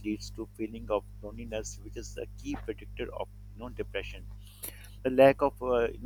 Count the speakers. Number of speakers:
one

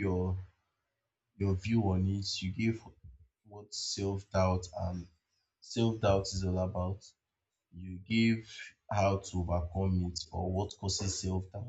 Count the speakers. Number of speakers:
one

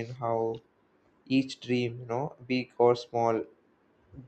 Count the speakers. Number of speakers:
one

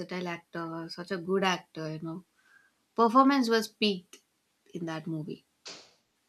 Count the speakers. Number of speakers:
one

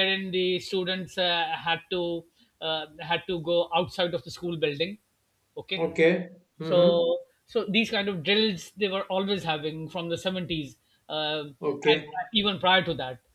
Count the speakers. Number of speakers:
two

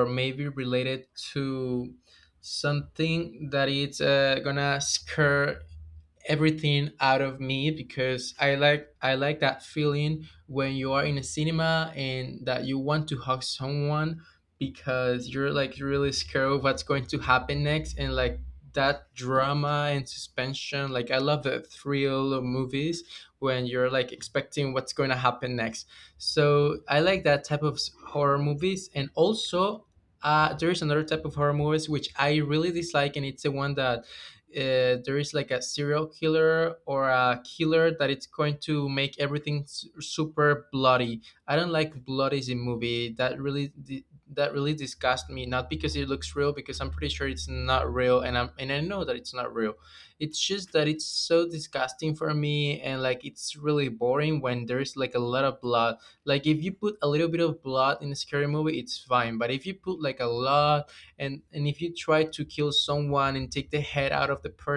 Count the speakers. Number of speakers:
one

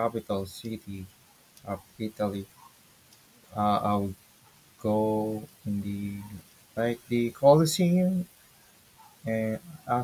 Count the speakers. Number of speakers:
one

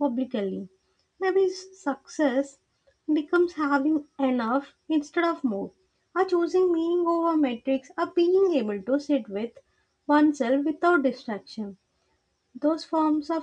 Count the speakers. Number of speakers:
one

